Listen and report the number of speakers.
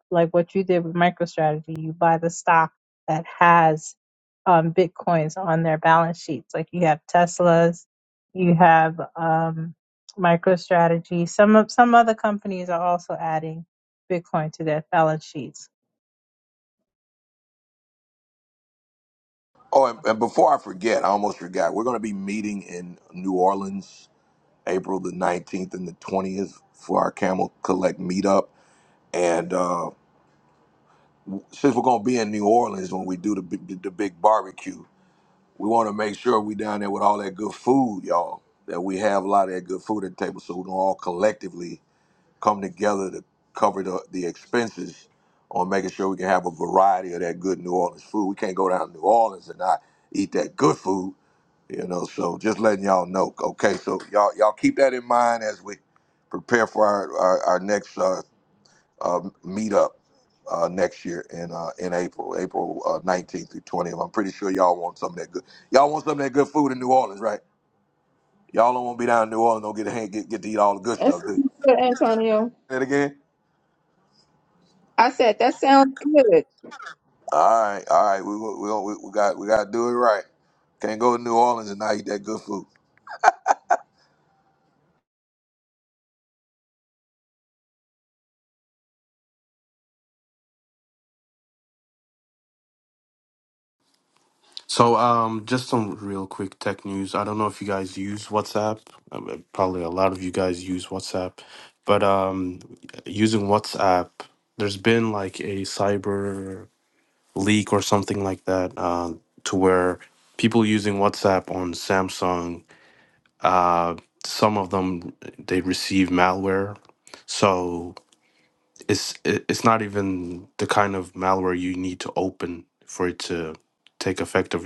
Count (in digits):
4